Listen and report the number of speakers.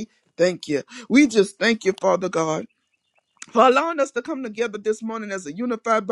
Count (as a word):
one